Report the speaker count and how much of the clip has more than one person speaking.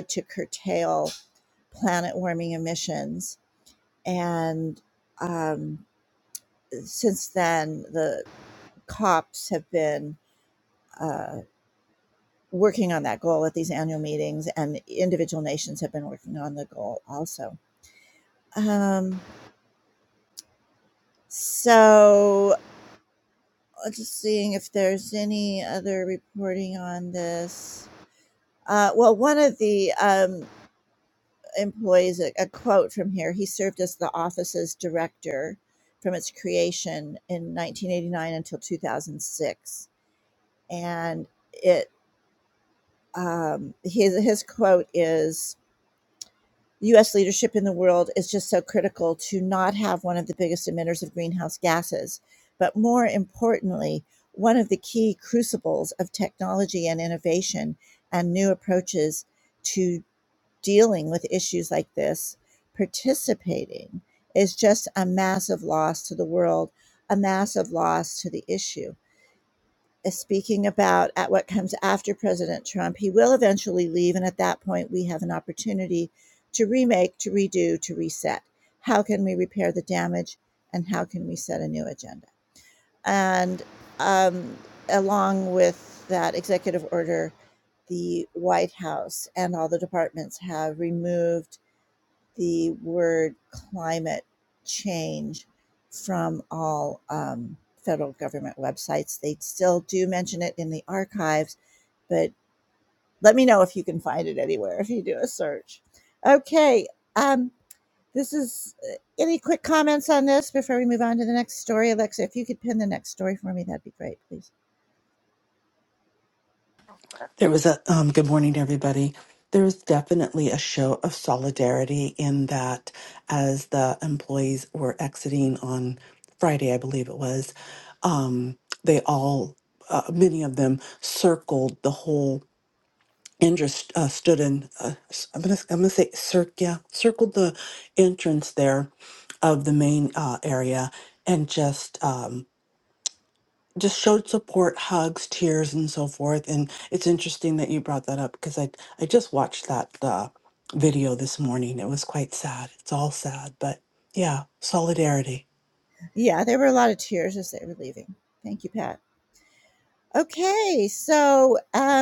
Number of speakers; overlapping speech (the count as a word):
two, no overlap